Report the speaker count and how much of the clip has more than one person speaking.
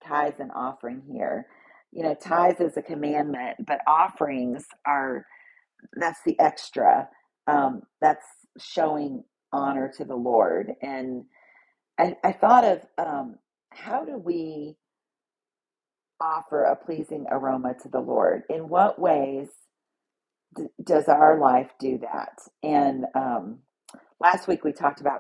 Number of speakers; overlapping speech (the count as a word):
one, no overlap